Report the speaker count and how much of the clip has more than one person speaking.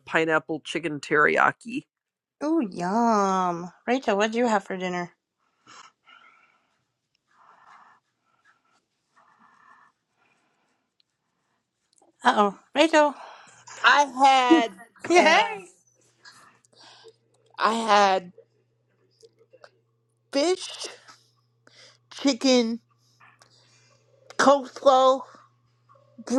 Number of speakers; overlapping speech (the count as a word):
three, about 1%